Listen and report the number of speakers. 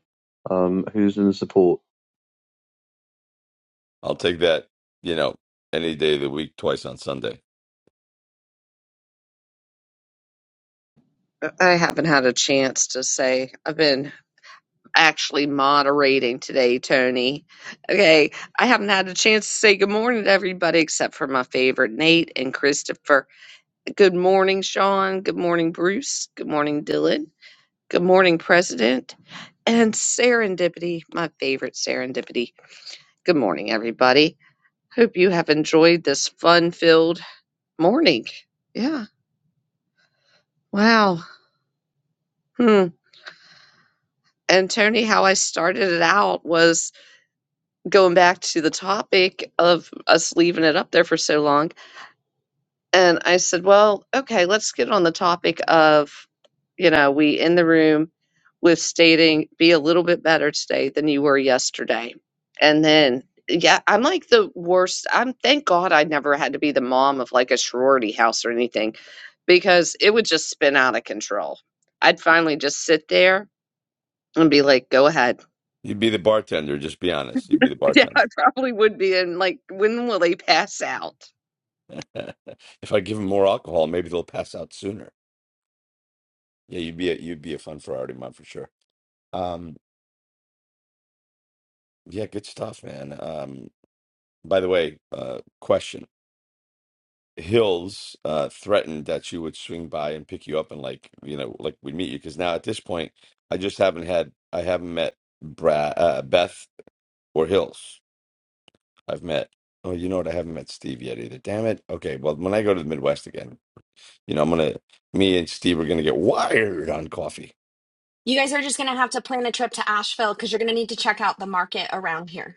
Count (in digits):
4